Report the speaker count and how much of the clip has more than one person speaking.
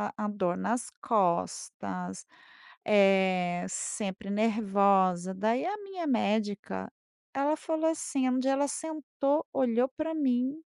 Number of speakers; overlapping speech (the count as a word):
one, no overlap